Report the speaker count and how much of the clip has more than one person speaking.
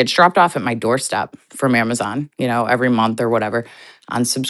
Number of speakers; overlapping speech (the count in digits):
1, no overlap